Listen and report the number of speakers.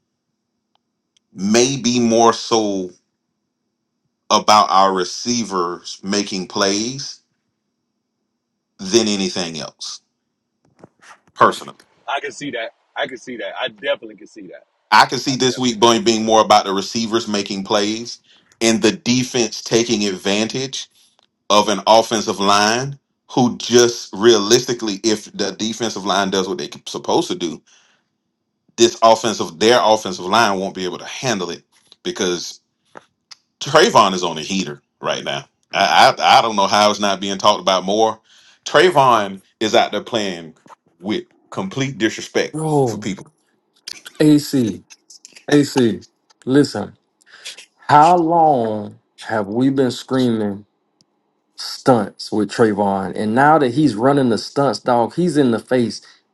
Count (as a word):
three